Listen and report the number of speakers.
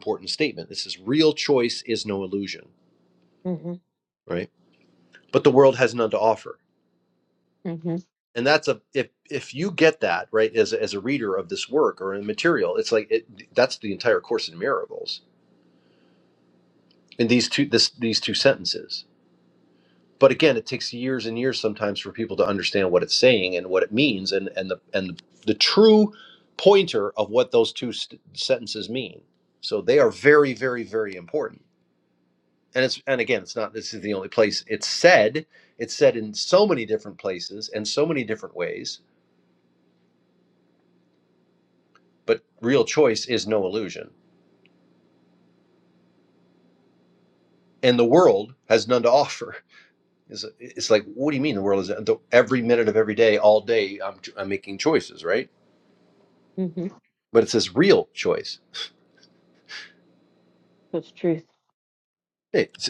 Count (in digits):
2